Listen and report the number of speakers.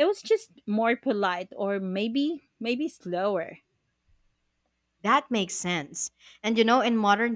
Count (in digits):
2